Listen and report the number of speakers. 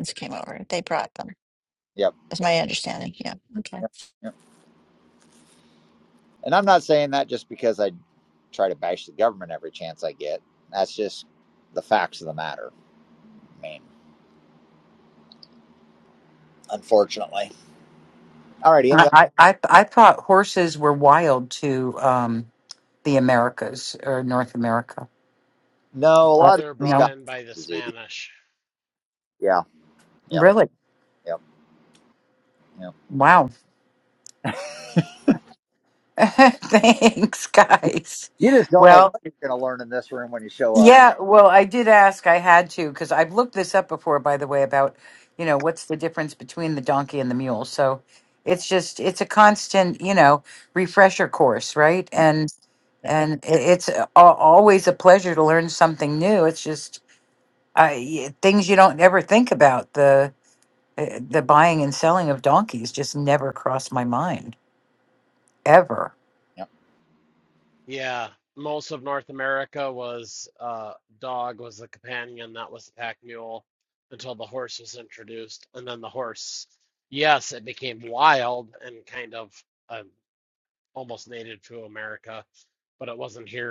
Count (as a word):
four